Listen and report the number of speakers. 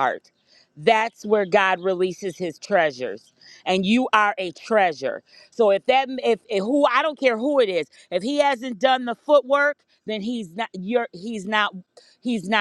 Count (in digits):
1